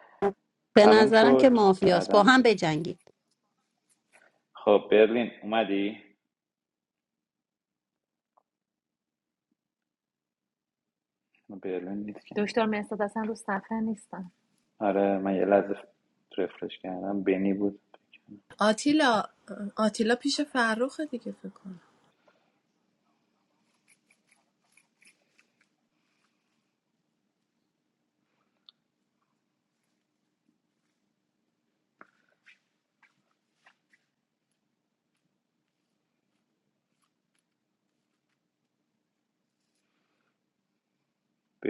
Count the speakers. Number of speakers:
4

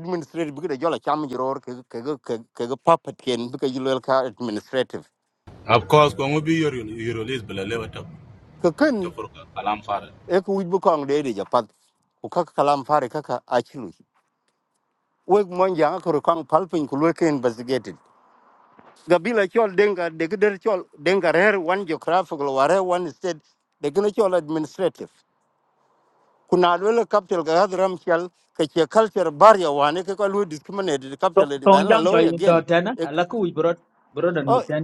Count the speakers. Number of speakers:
3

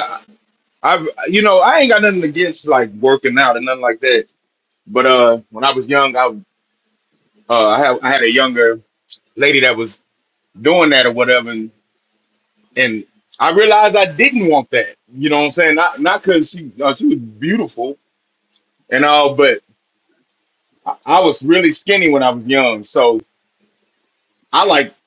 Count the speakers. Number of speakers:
1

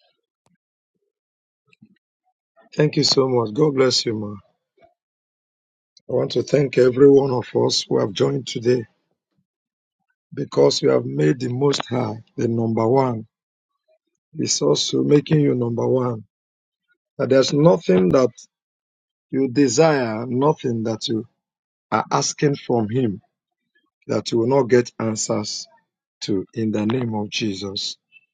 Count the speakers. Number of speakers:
1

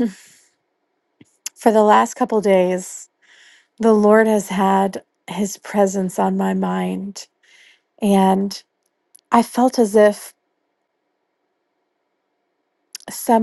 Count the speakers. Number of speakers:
1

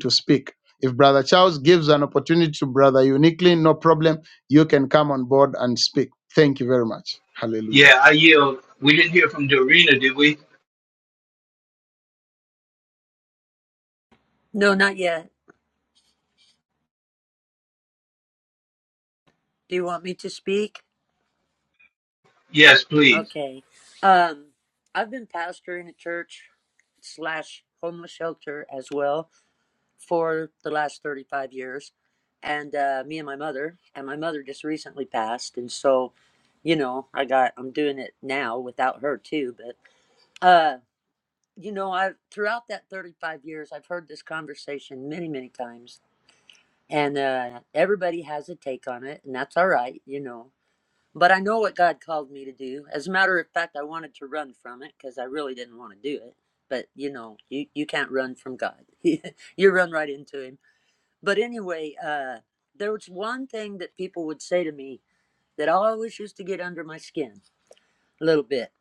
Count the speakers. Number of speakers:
3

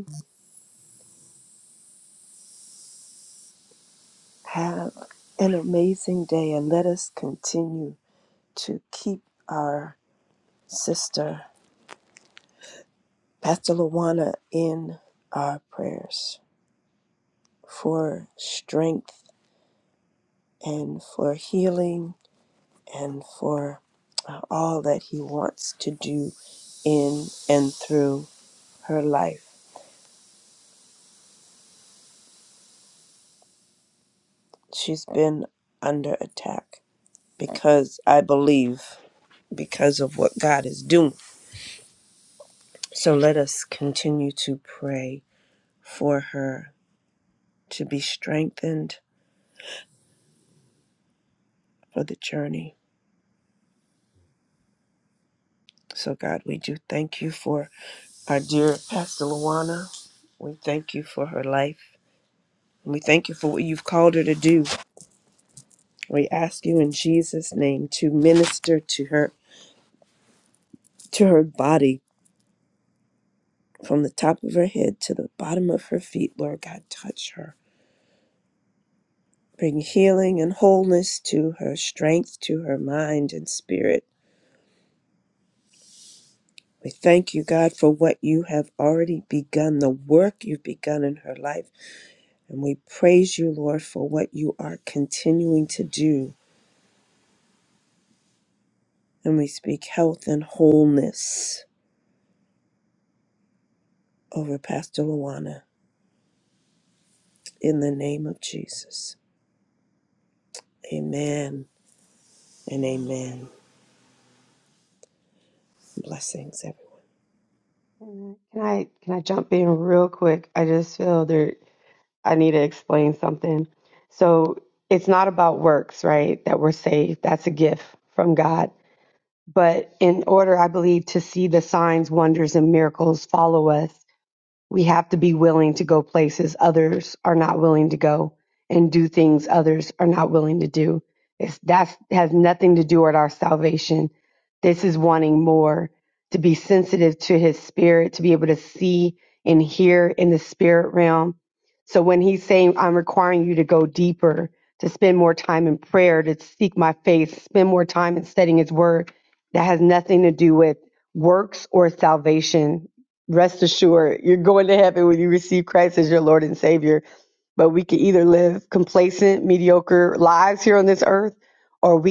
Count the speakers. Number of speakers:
2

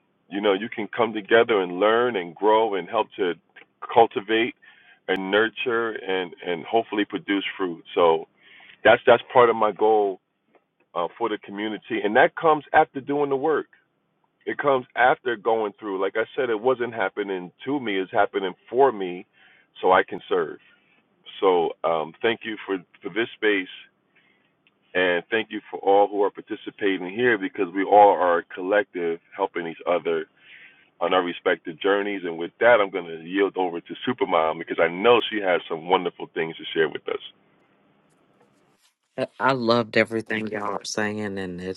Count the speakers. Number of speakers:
2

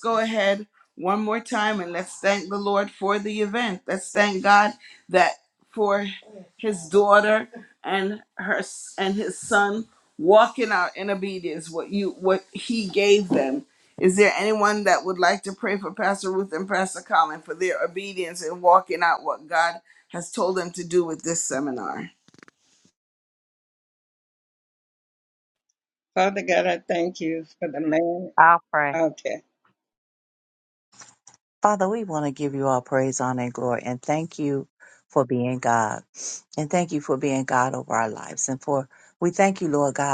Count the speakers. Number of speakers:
3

